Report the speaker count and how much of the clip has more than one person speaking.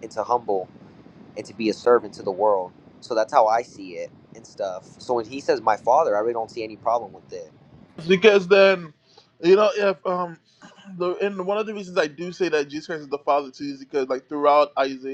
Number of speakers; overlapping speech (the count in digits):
2, no overlap